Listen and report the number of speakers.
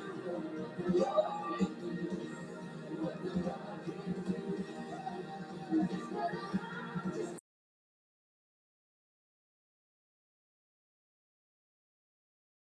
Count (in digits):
0